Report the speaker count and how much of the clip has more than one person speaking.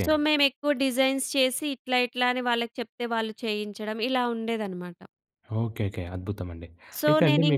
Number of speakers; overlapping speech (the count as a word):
two, about 7%